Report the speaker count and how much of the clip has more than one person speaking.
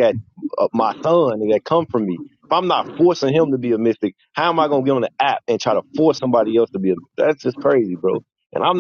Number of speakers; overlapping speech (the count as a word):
one, no overlap